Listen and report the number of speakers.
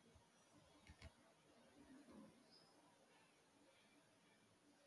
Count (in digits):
0